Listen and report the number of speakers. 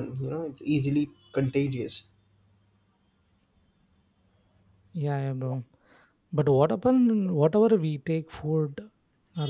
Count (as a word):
two